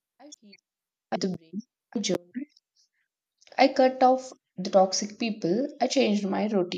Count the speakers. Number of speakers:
1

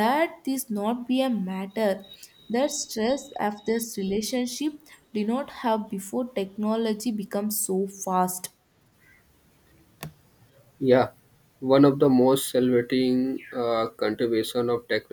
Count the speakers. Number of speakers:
2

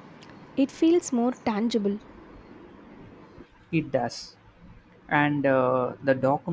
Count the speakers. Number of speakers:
2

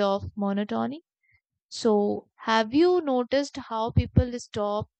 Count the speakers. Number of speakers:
1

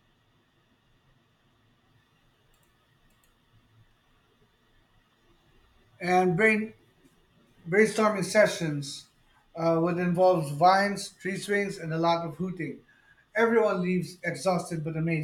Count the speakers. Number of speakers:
1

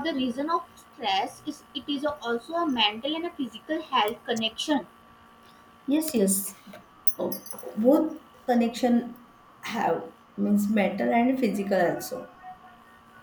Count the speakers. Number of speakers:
2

